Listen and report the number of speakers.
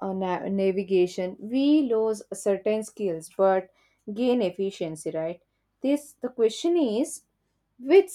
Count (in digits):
1